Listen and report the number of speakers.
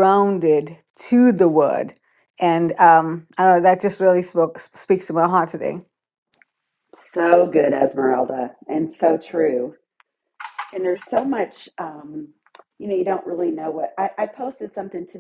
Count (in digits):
2